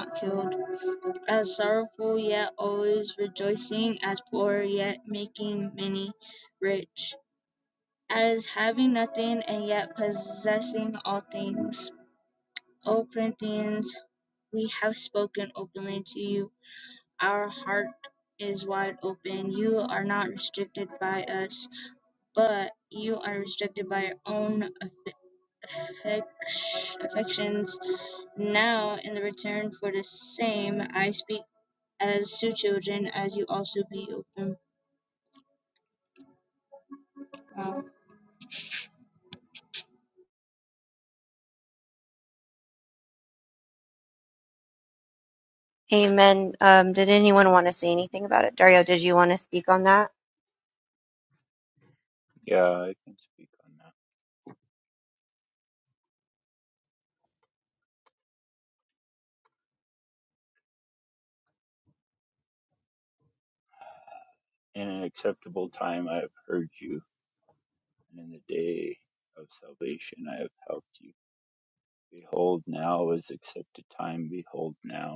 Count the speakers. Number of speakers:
3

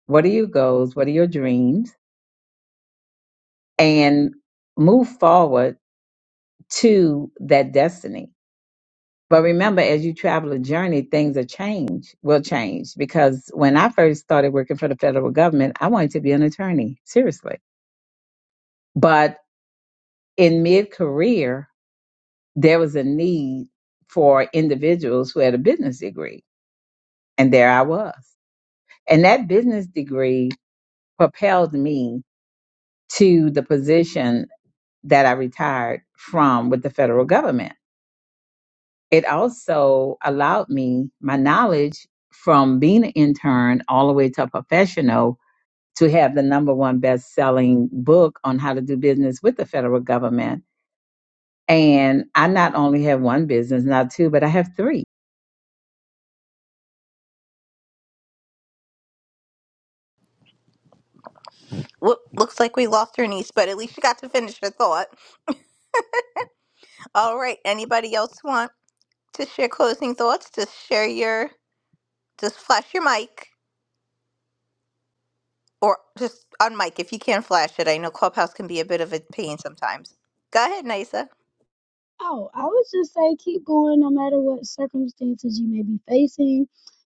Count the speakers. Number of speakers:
3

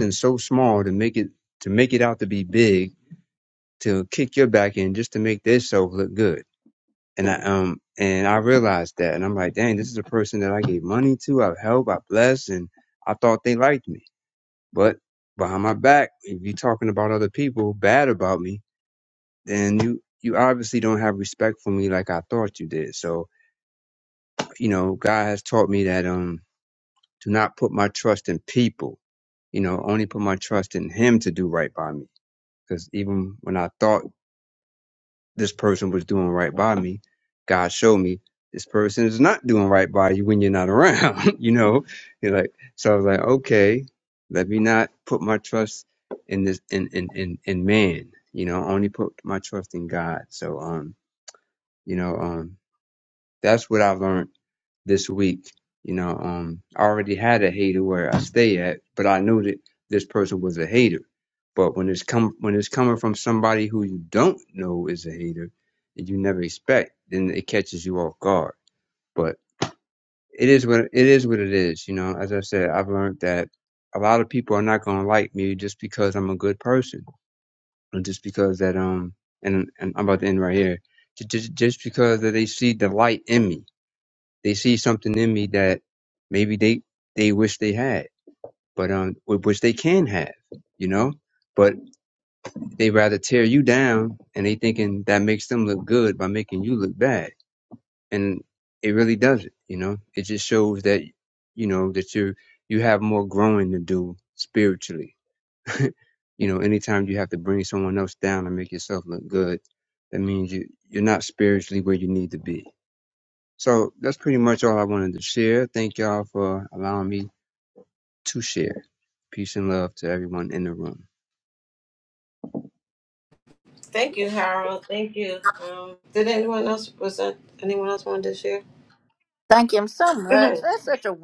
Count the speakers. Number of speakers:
3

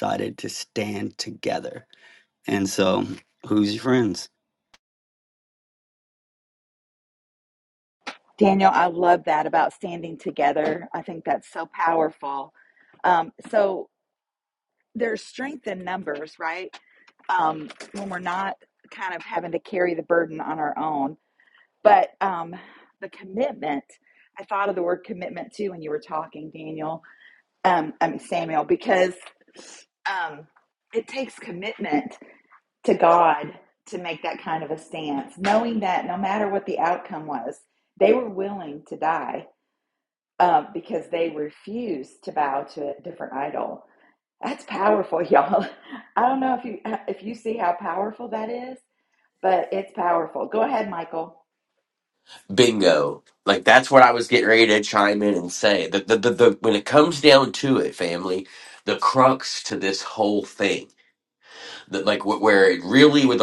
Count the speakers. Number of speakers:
3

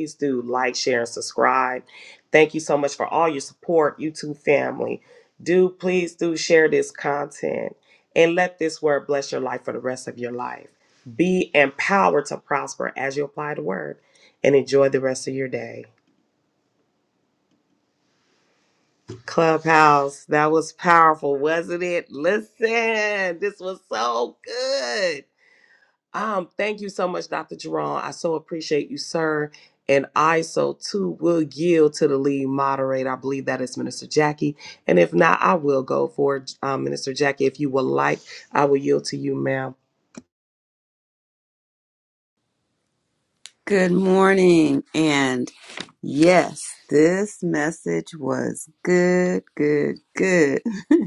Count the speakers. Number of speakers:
2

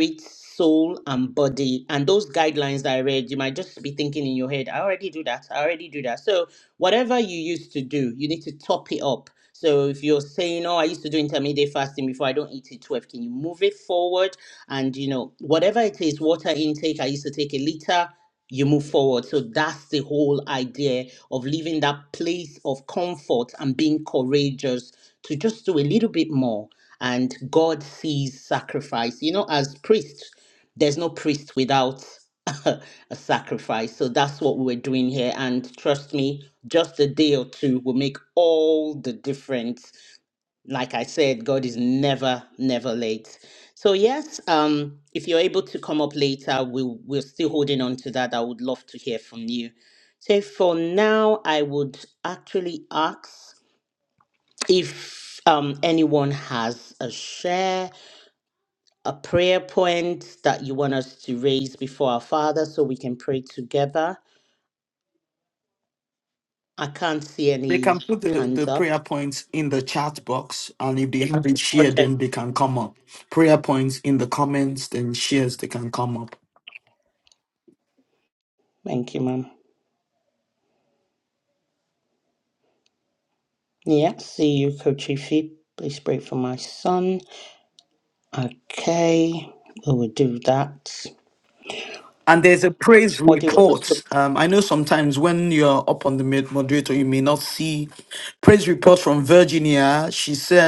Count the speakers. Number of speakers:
2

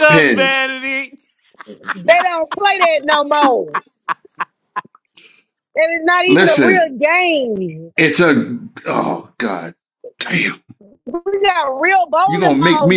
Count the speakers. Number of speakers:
3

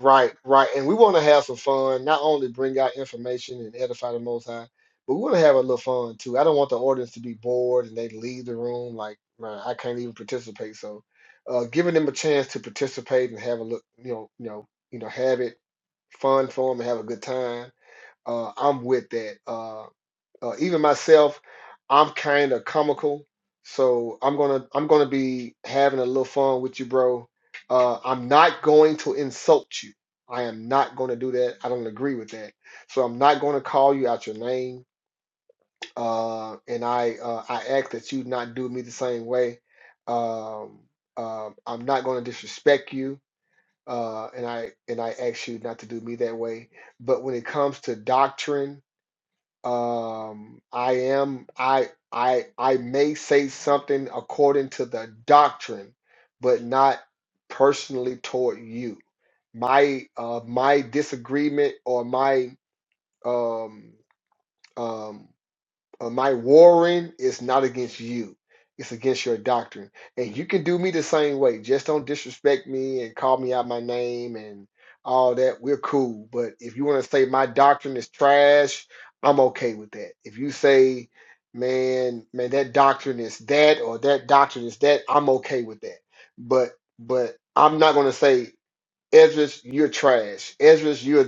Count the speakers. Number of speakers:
1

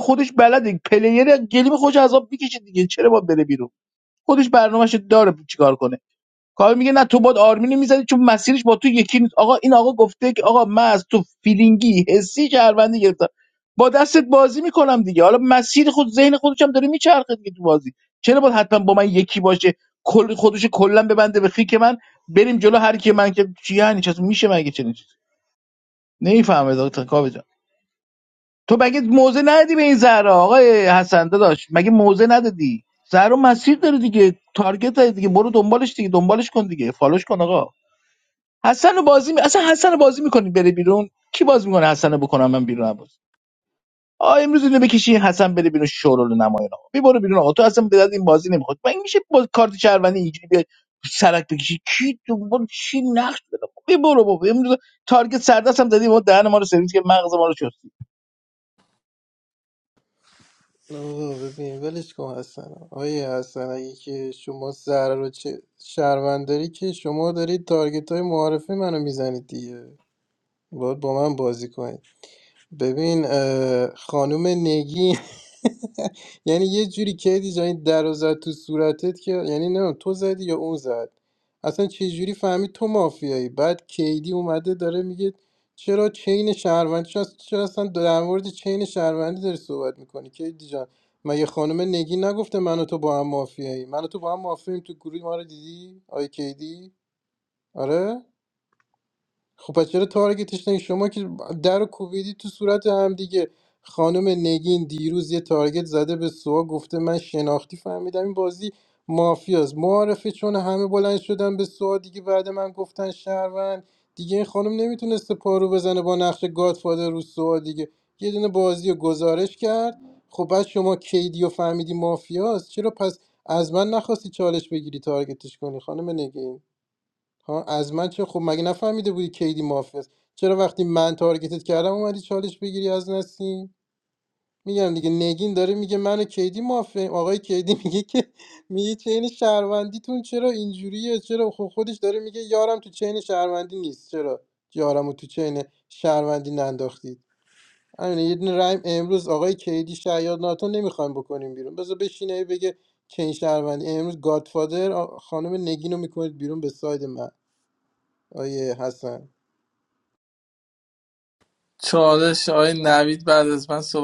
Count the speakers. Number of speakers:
3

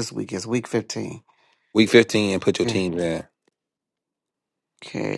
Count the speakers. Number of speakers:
2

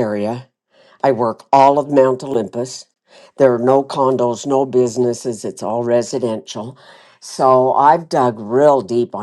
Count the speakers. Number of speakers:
1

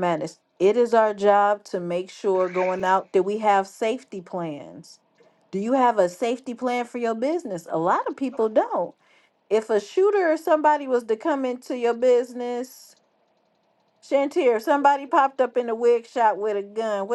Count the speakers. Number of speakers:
1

